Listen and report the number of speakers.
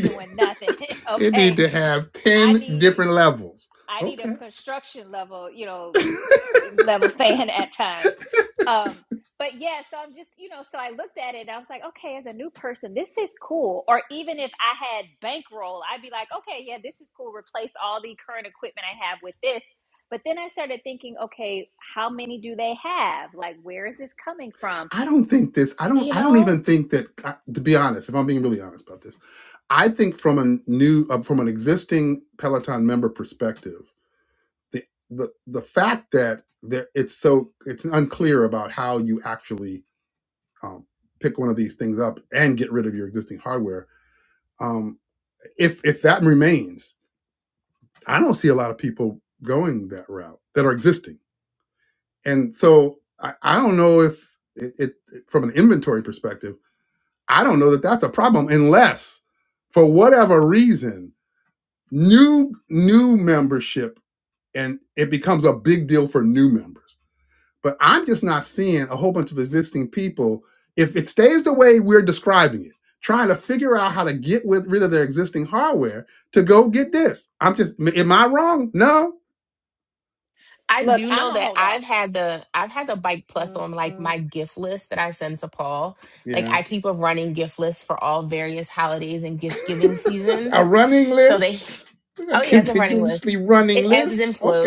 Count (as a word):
three